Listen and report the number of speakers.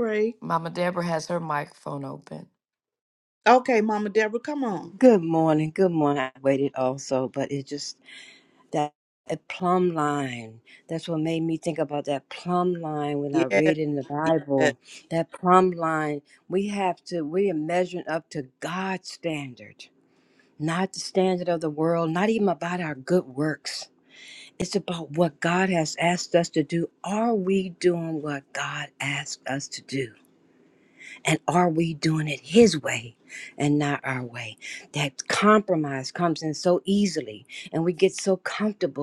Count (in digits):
3